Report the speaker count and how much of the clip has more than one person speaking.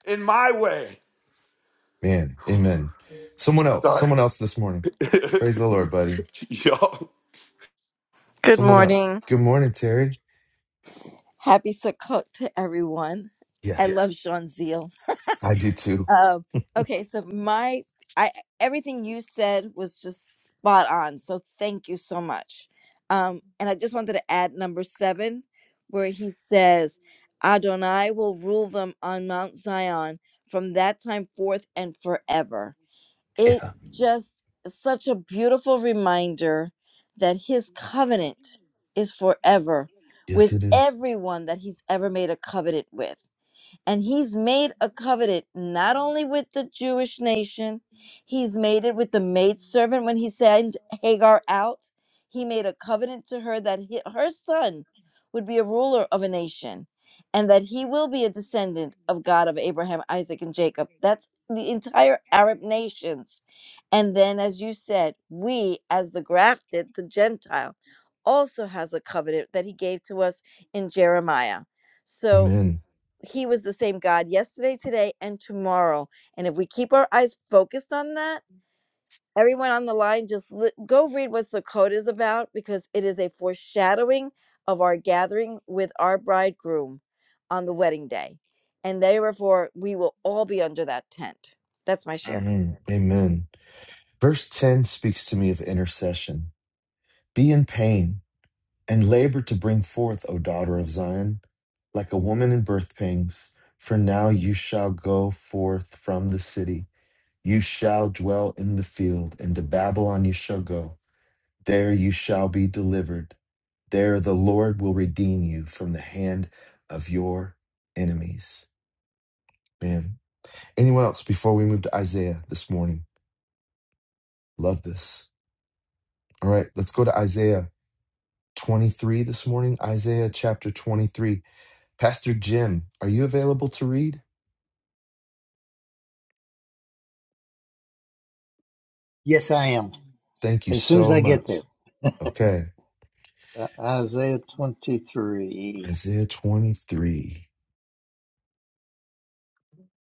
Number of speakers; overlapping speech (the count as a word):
four, about 2%